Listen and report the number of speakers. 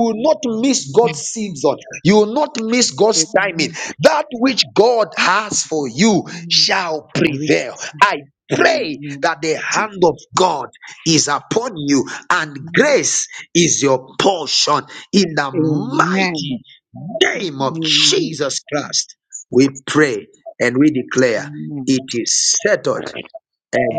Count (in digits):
2